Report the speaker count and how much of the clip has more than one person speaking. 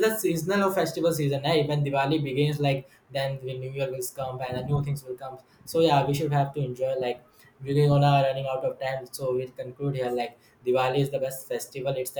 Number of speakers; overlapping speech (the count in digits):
1, no overlap